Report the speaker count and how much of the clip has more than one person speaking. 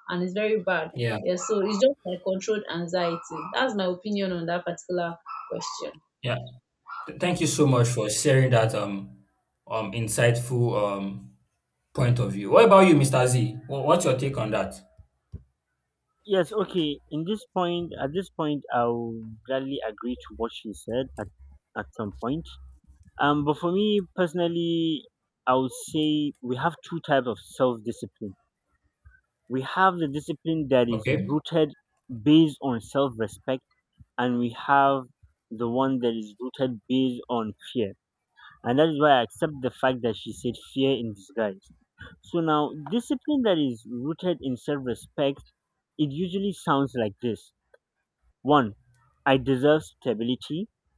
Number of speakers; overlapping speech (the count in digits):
3, about 1%